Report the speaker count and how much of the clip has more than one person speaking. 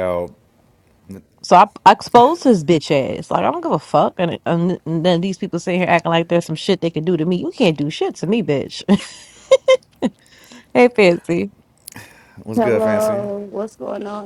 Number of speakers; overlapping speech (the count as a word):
three, about 5%